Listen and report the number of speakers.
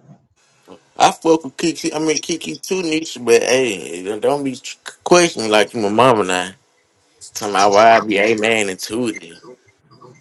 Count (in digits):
1